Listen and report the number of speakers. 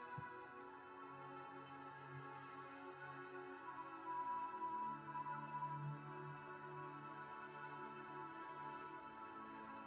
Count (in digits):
0